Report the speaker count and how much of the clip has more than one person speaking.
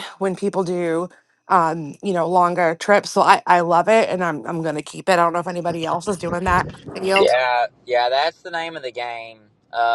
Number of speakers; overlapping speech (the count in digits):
2, about 2%